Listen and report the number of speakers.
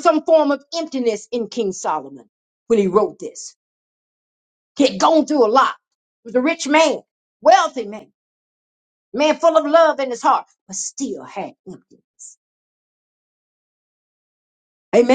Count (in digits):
1